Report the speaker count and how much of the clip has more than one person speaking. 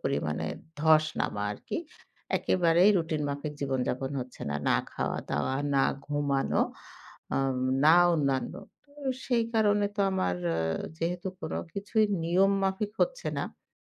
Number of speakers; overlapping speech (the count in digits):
1, no overlap